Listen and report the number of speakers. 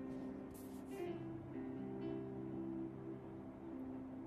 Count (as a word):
zero